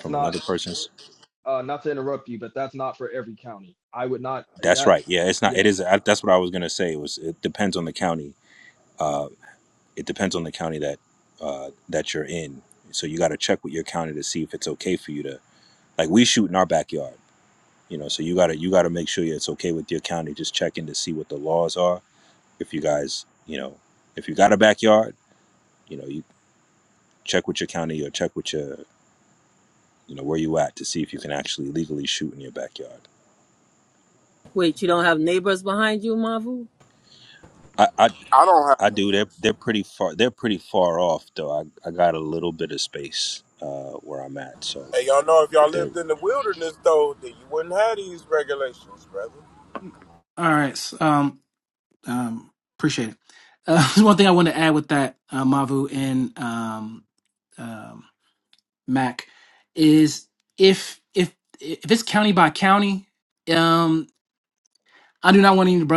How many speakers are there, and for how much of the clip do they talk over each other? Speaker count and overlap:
5, about 2%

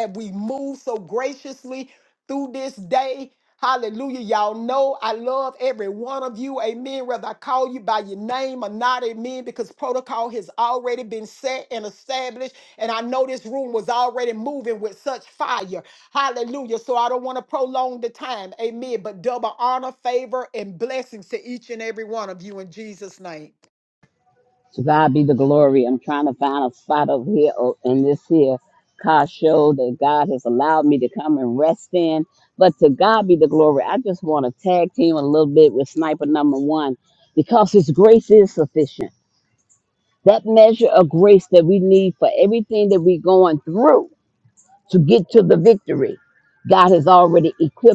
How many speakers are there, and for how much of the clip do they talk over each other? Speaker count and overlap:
2, no overlap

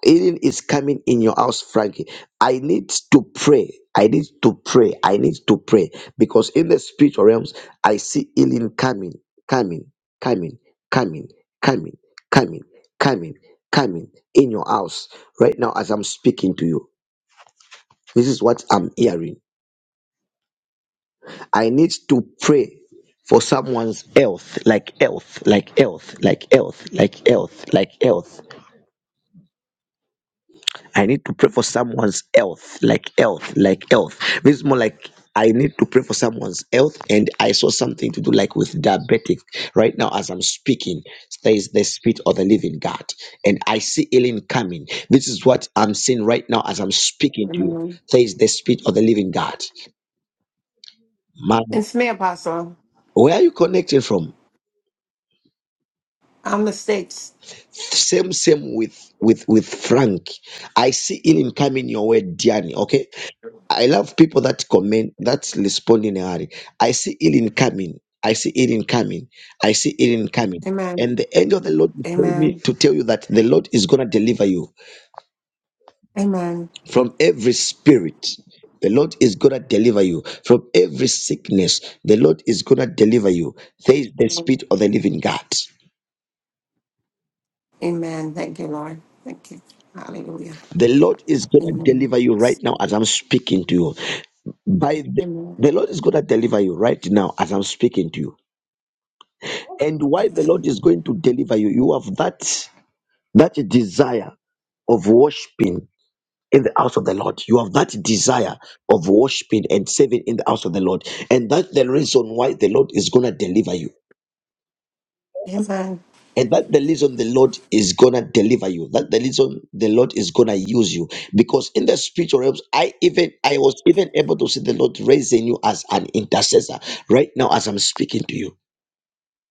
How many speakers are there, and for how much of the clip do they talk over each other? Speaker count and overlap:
2, about 1%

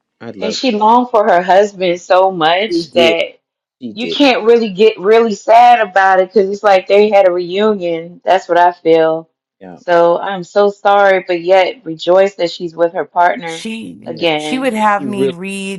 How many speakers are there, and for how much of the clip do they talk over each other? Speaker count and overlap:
3, about 12%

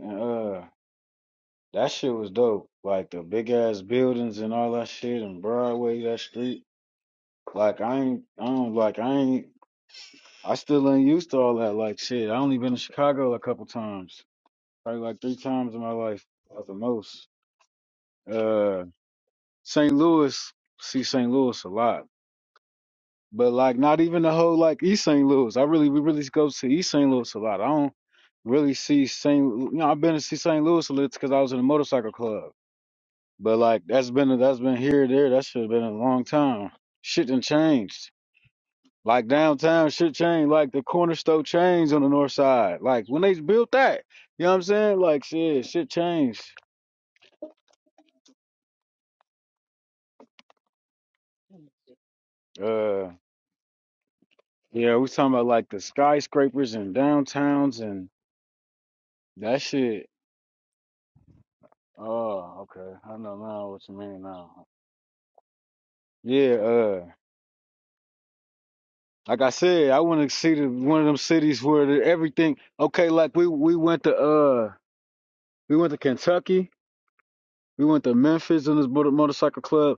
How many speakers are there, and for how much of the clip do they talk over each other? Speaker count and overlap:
1, no overlap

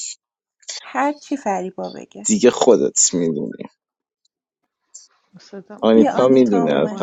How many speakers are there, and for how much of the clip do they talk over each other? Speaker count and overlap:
3, about 17%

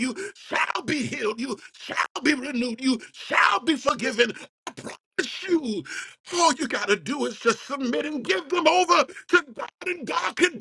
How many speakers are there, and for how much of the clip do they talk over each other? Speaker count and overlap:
1, no overlap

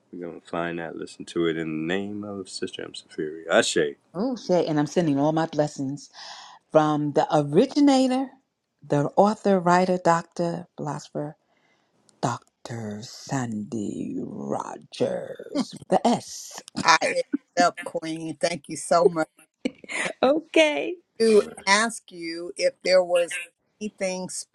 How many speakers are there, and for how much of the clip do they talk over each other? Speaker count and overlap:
3, about 1%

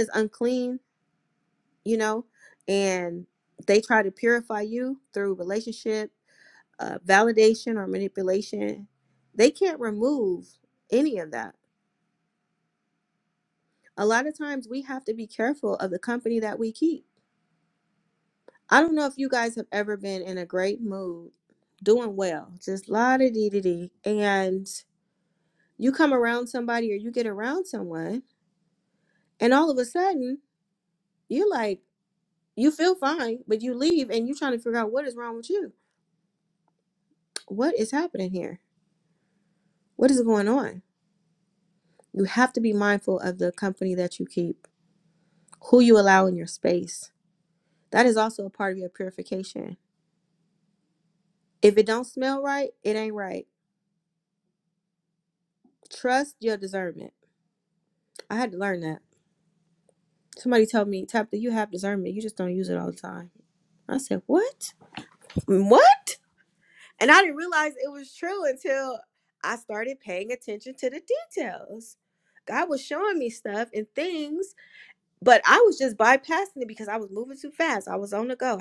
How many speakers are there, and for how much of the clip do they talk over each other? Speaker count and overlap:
1, no overlap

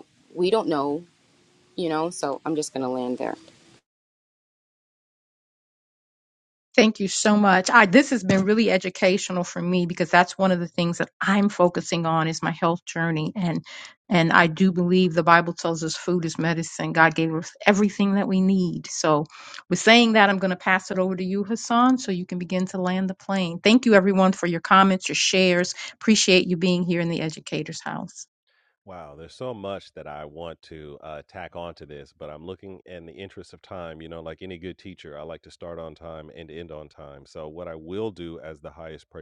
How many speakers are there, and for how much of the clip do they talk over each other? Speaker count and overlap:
3, no overlap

